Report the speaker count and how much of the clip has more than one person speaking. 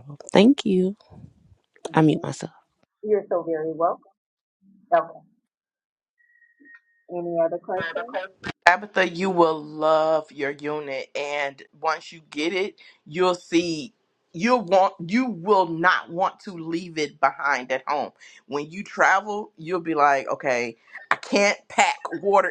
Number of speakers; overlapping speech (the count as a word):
three, about 1%